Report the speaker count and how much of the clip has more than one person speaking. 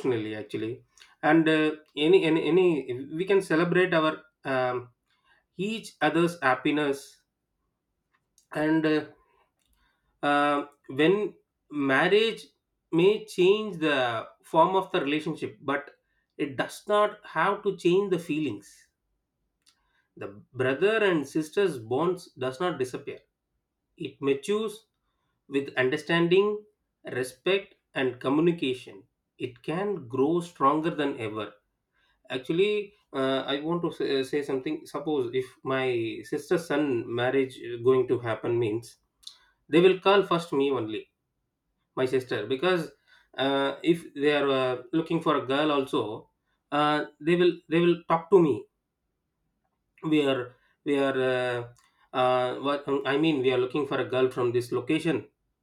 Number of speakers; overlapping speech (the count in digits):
1, no overlap